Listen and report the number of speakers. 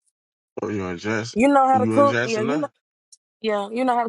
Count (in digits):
2